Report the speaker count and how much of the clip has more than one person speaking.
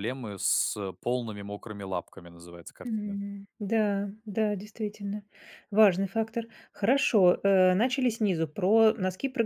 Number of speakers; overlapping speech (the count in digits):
2, about 3%